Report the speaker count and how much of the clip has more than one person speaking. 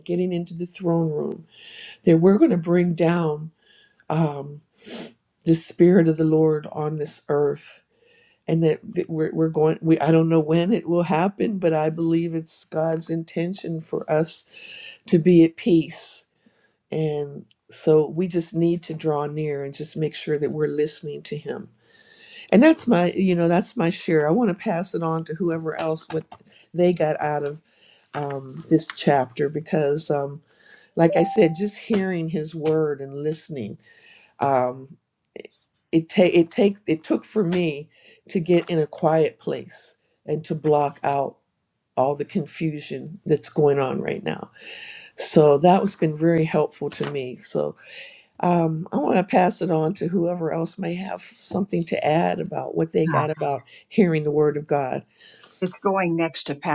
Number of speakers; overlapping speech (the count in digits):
2, under 1%